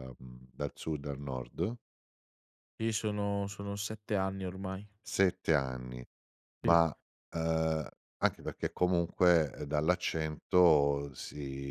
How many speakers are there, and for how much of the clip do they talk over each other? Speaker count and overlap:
2, about 1%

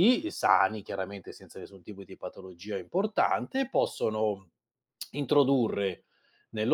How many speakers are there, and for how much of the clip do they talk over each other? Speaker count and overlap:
1, no overlap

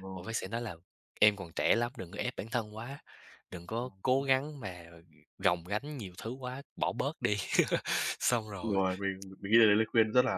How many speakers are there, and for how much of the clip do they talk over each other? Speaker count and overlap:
2, about 4%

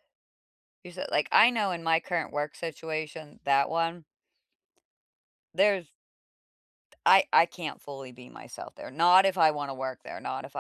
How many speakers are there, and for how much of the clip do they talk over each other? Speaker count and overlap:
1, no overlap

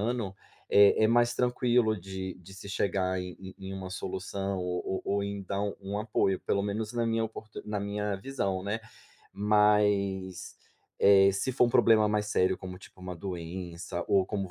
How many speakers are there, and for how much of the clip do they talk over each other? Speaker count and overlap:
1, no overlap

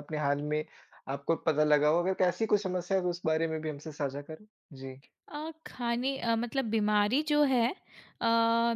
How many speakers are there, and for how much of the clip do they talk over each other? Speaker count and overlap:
2, no overlap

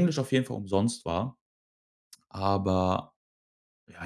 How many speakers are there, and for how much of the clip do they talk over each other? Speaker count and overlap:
1, no overlap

